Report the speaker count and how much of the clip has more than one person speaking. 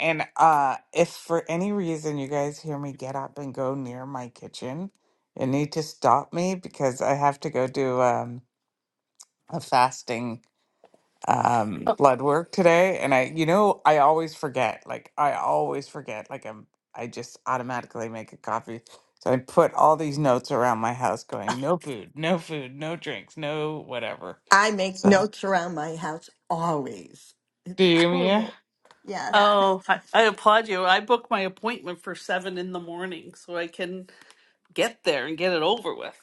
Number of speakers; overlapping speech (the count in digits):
3, about 3%